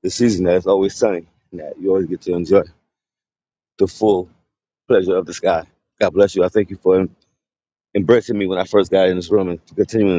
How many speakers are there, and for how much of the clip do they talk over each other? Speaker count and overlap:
one, no overlap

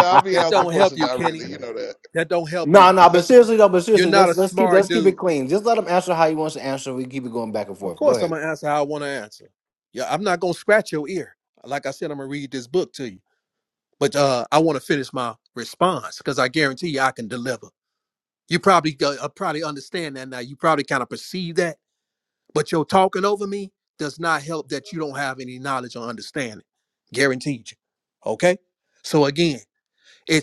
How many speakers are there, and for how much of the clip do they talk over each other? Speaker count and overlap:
three, about 10%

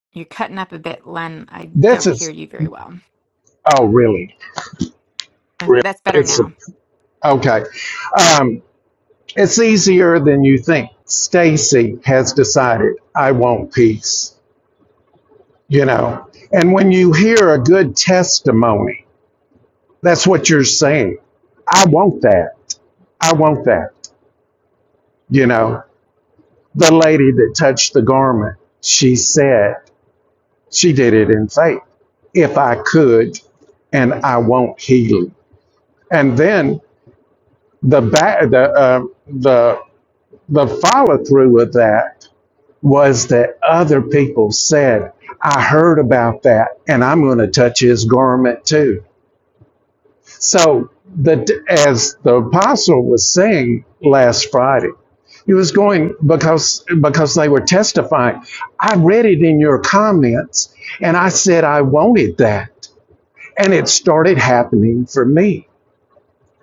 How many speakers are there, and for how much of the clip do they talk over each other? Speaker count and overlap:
two, about 2%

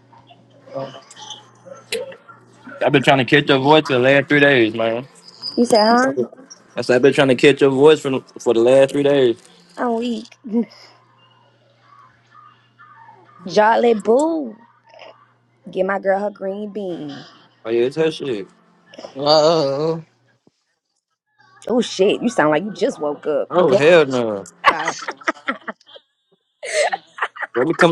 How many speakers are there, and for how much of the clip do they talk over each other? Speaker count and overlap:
three, about 2%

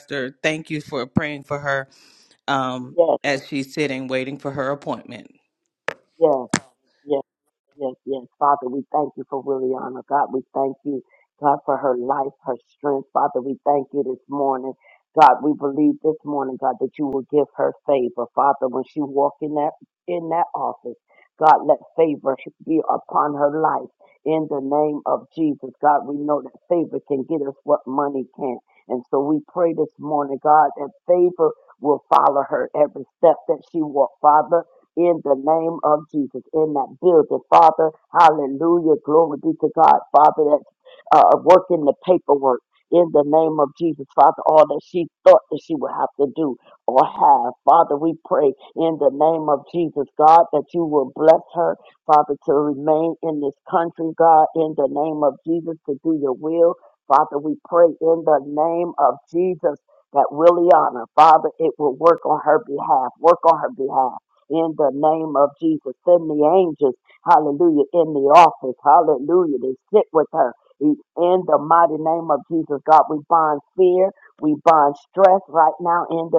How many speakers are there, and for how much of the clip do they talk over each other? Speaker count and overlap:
two, no overlap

